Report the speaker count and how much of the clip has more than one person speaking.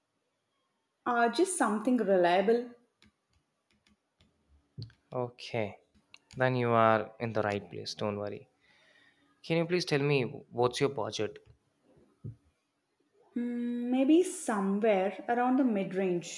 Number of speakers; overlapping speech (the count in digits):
2, no overlap